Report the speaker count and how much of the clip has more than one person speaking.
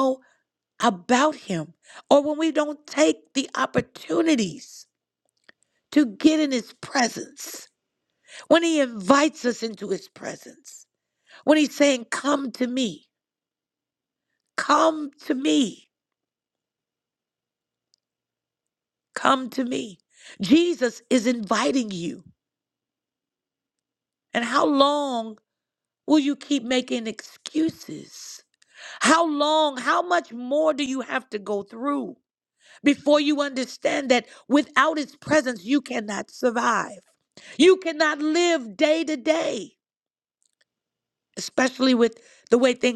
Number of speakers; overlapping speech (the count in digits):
1, no overlap